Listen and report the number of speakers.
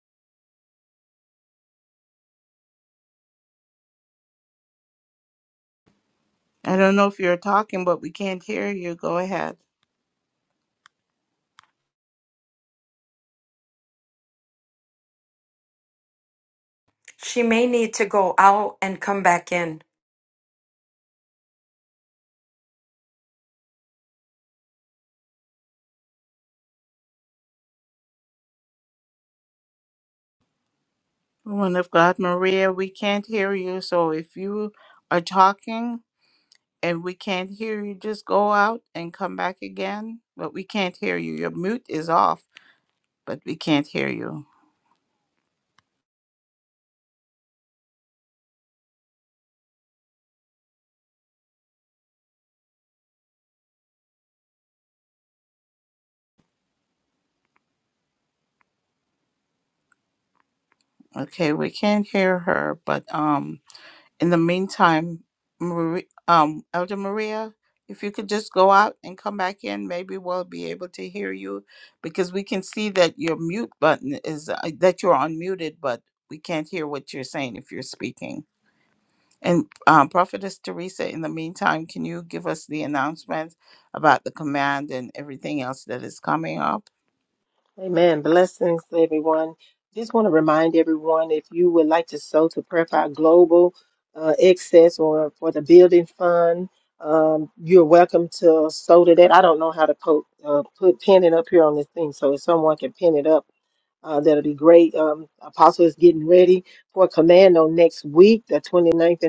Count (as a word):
three